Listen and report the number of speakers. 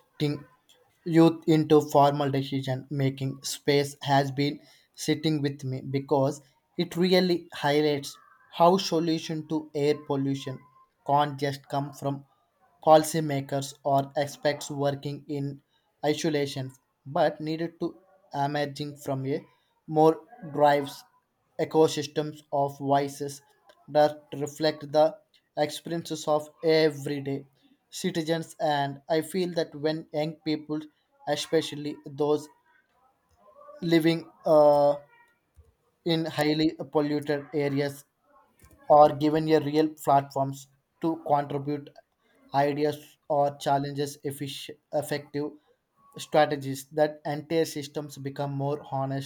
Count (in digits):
1